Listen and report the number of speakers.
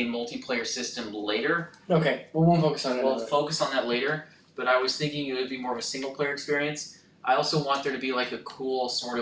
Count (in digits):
2